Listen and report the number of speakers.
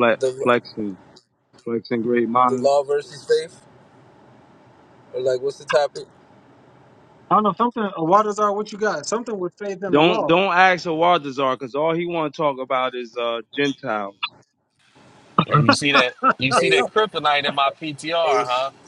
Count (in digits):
4